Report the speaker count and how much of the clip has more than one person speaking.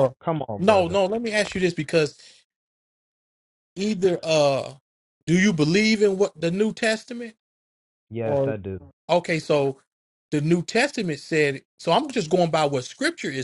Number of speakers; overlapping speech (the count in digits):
2, about 5%